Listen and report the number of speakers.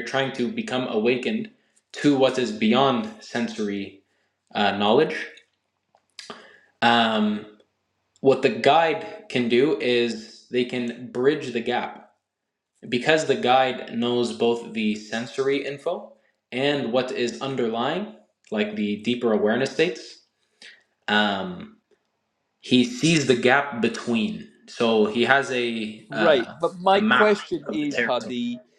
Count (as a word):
two